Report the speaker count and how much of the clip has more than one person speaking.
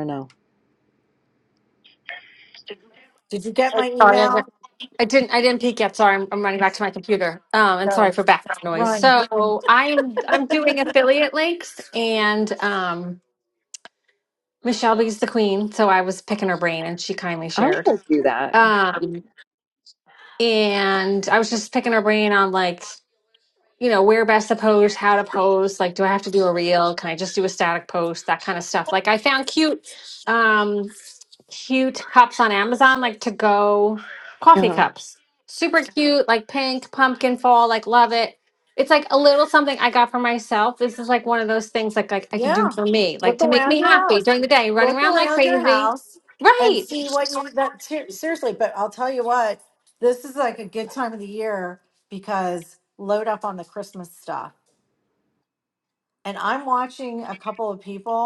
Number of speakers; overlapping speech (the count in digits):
3, about 9%